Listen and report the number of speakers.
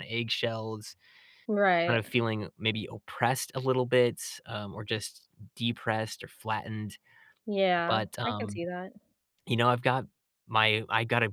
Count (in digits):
2